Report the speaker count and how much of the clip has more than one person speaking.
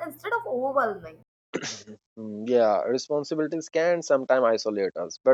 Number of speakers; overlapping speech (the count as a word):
two, no overlap